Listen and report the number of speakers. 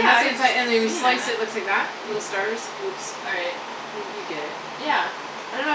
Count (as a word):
two